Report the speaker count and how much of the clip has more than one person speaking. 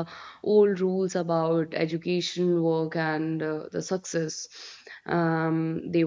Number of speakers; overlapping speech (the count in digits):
1, no overlap